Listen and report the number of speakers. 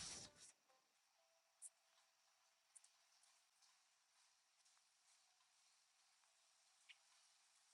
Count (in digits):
0